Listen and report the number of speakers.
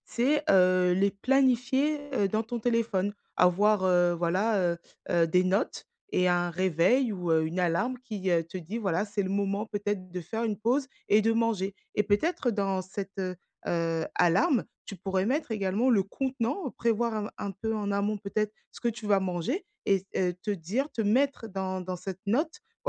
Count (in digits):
1